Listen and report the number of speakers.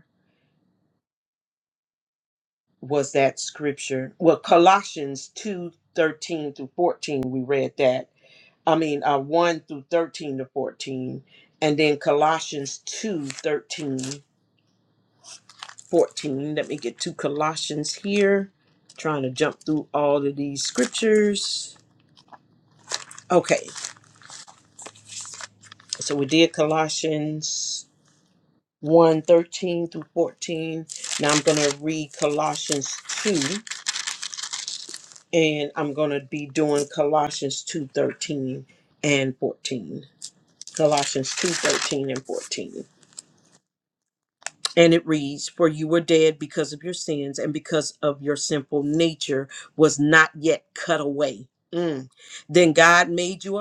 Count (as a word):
one